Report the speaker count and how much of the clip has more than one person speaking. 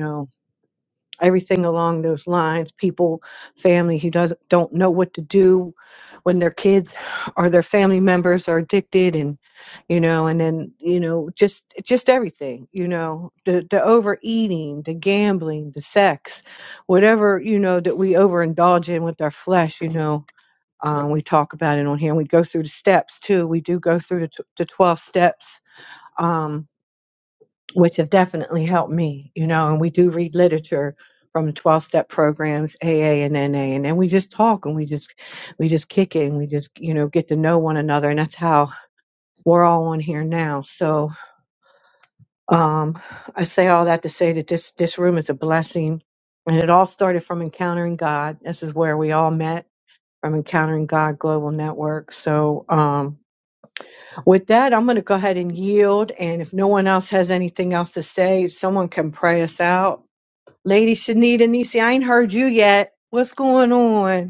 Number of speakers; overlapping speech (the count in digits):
1, no overlap